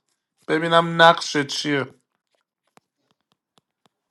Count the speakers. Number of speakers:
one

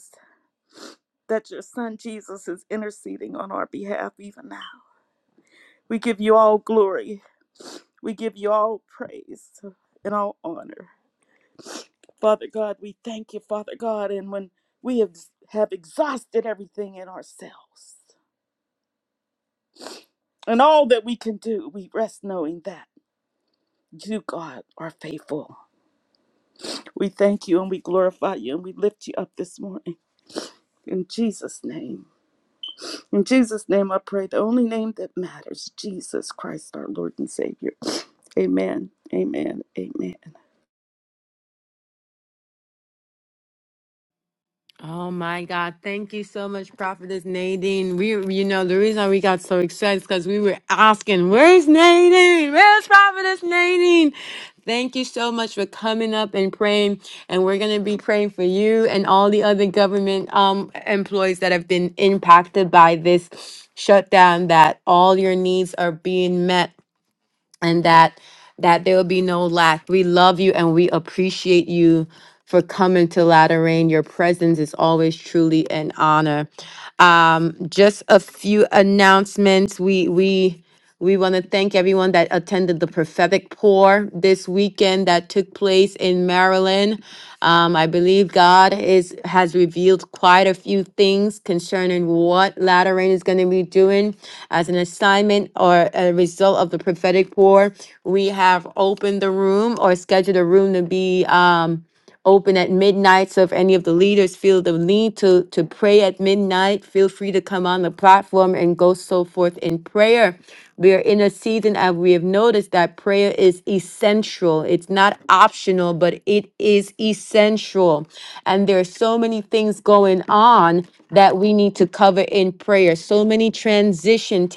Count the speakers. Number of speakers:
two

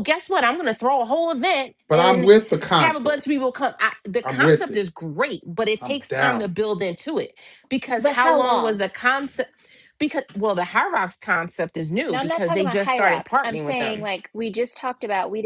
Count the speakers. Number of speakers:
three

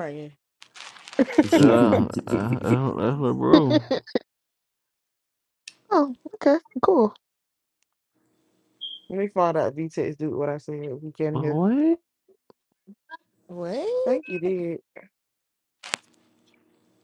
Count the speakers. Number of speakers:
three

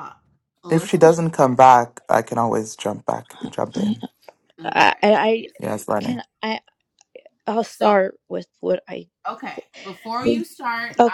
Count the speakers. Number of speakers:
three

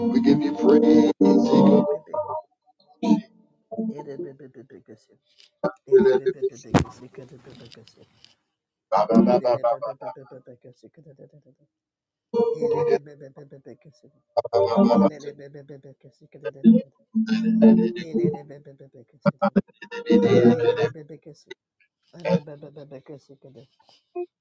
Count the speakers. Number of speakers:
two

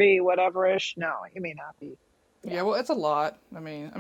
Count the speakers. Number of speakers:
two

